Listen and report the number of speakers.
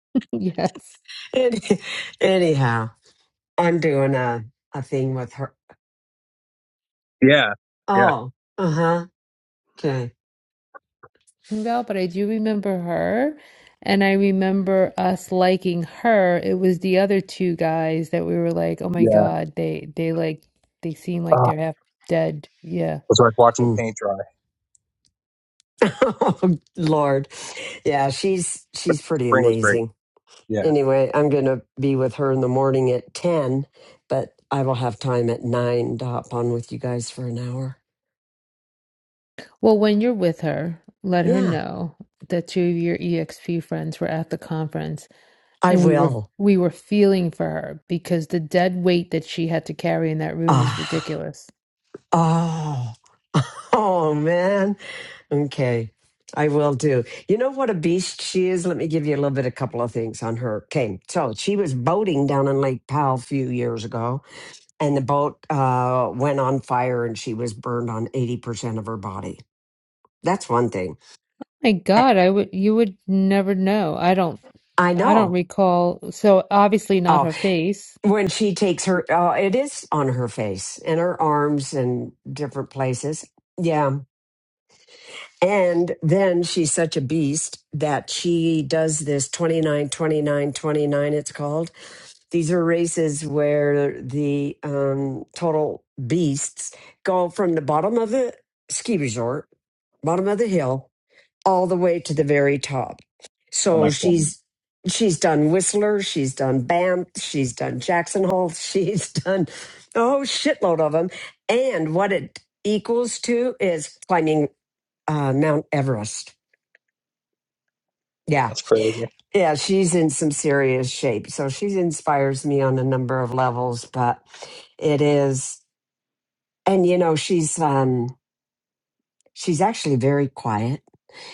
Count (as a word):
three